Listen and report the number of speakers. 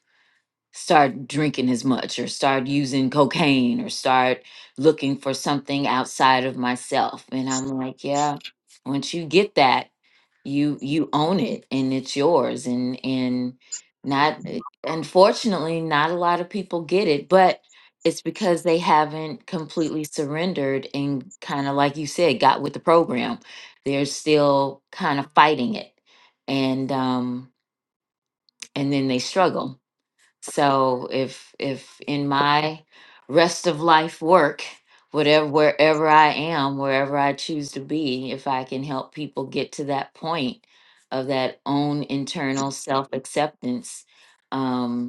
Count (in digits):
1